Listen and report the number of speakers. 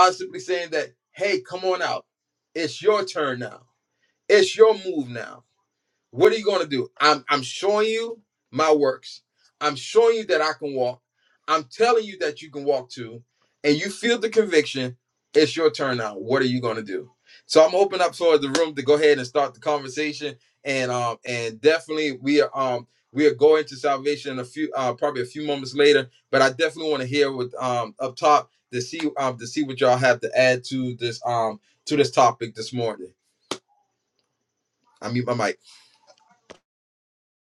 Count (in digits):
1